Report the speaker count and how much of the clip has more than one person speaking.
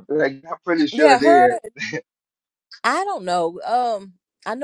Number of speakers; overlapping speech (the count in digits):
2, about 13%